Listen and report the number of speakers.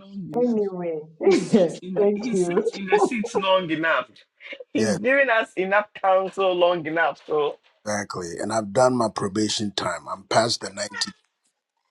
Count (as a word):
three